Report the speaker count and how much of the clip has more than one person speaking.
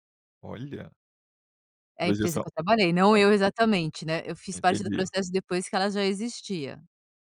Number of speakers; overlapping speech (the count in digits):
2, about 15%